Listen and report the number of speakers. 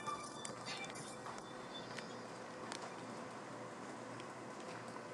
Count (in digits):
0